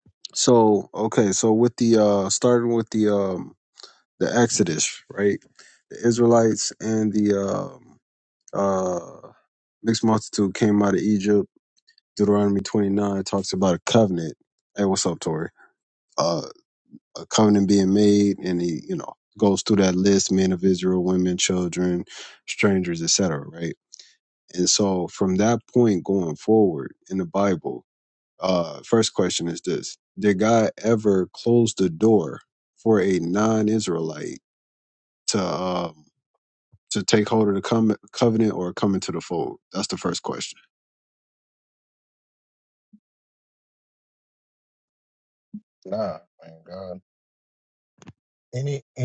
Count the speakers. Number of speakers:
two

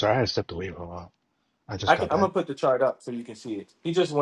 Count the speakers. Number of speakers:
two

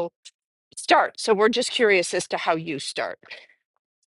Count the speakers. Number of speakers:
one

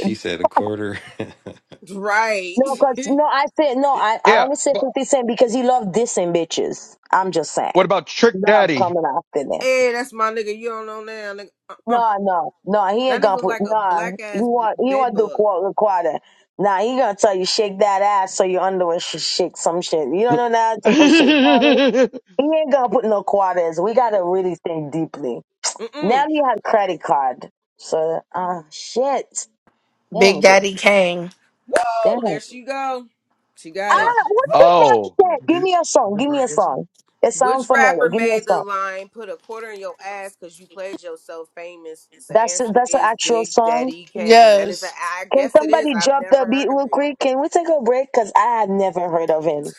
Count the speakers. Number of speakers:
five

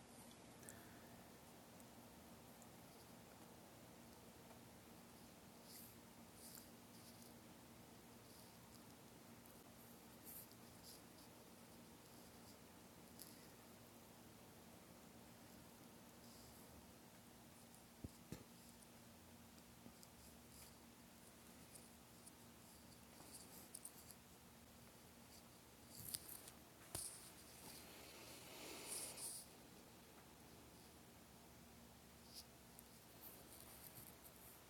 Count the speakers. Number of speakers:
zero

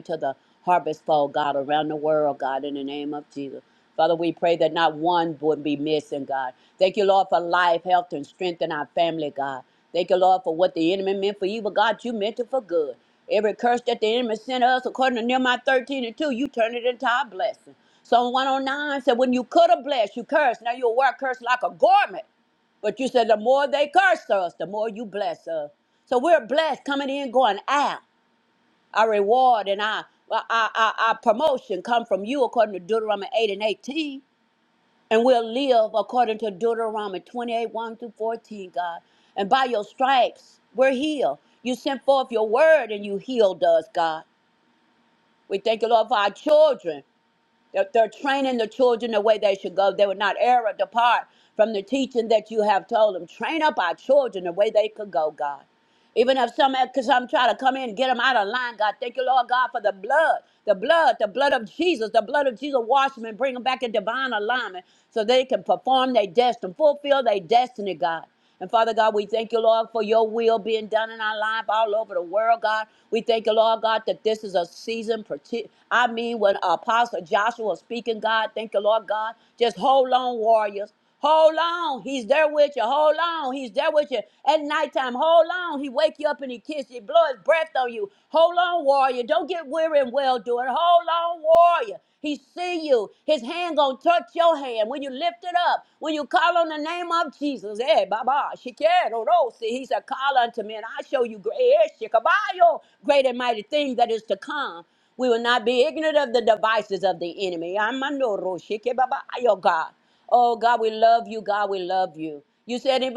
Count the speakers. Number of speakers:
one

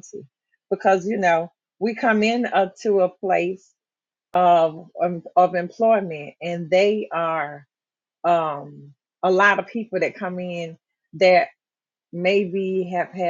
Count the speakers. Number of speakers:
one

